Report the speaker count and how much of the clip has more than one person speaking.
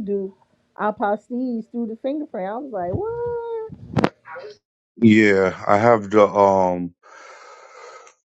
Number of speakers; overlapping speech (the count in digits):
2, no overlap